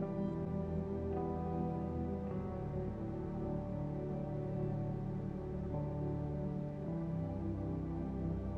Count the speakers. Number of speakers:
0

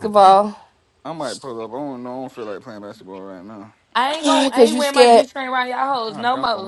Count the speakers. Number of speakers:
3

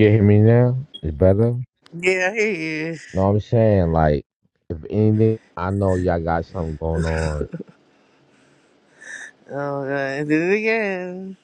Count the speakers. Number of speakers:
2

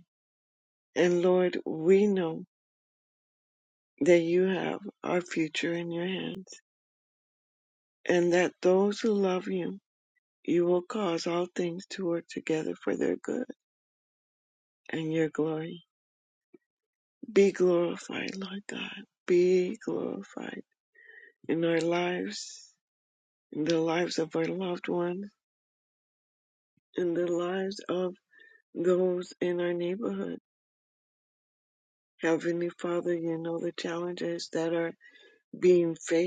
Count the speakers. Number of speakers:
1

